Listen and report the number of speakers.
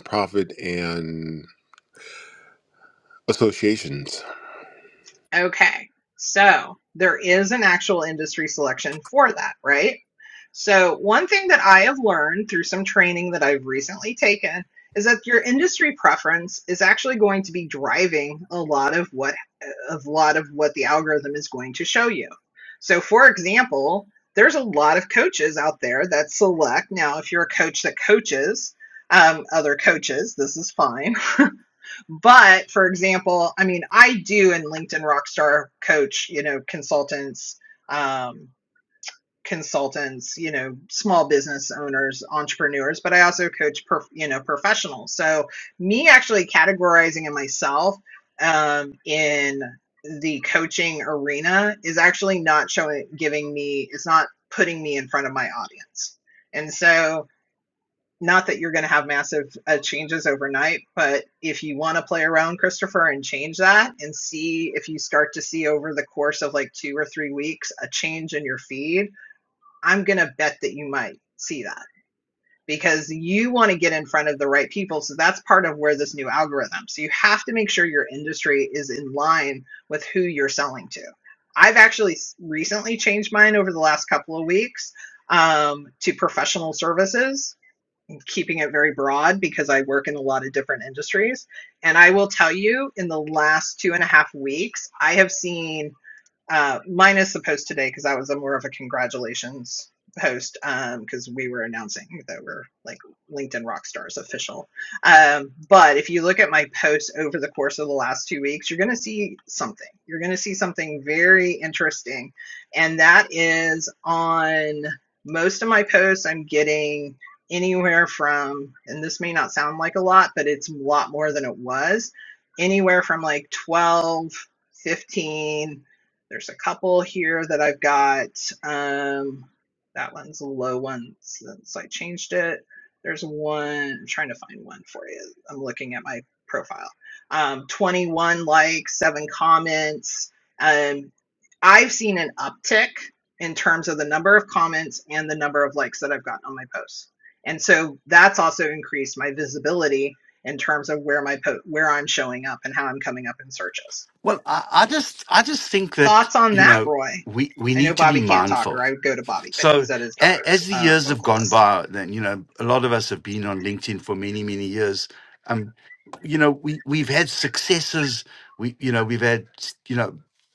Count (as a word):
three